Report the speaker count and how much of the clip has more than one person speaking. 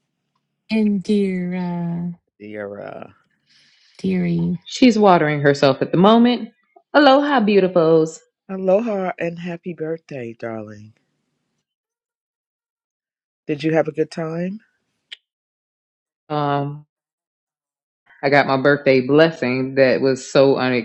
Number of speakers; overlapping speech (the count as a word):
three, no overlap